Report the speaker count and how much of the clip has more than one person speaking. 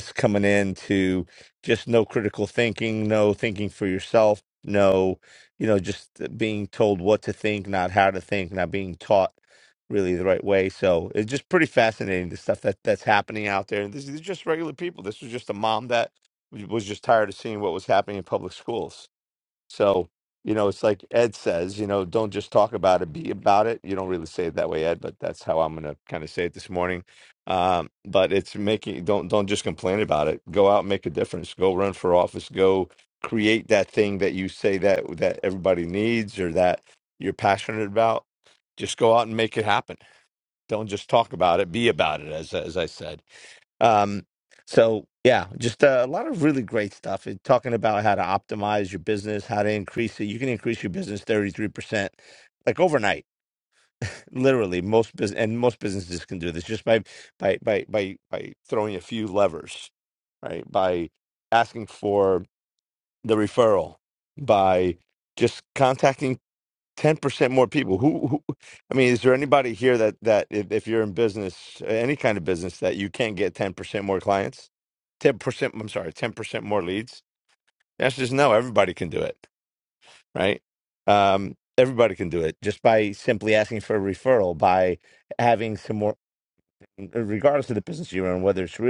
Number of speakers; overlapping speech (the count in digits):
1, no overlap